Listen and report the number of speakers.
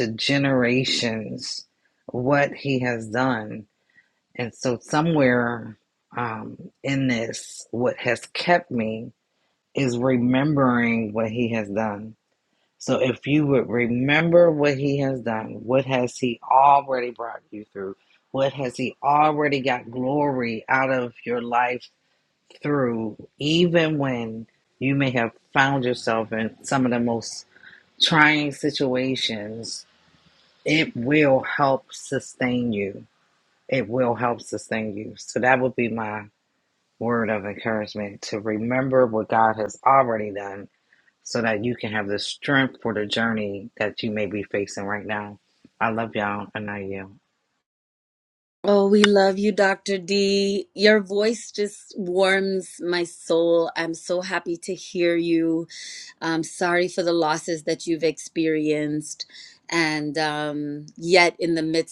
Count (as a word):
two